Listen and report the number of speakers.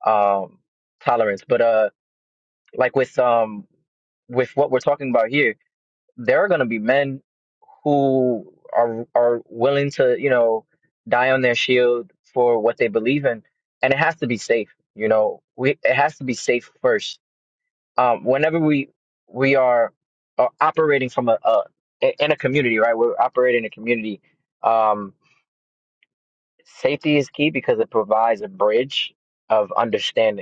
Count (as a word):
one